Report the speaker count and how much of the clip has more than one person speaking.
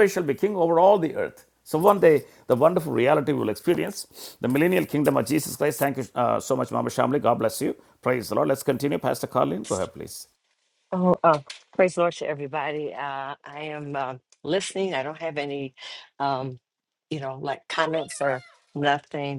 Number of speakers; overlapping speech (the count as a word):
two, no overlap